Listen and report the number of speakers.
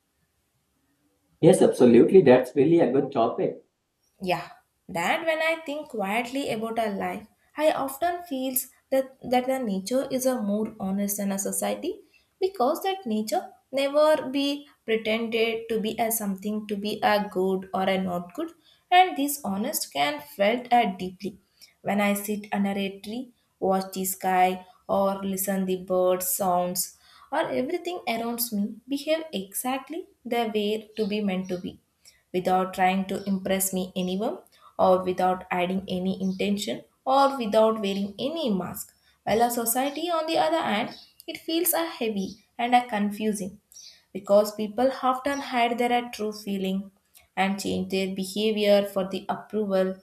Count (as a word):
two